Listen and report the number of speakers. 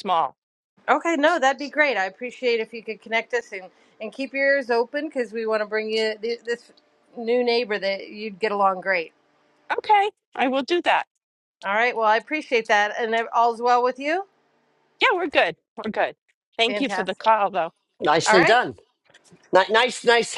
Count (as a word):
three